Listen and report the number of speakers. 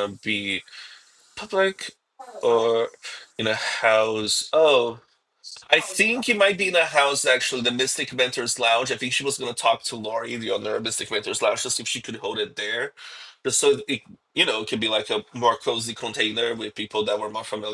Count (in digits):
1